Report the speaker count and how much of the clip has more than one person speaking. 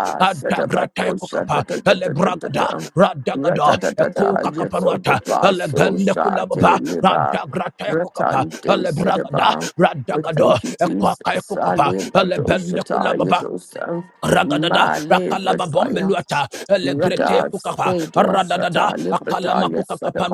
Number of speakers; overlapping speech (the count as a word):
two, about 76%